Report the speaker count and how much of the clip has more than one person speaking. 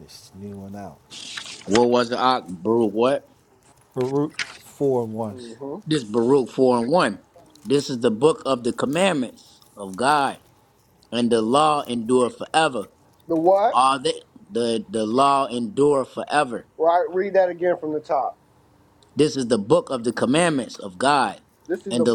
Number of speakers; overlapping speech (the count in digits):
3, about 2%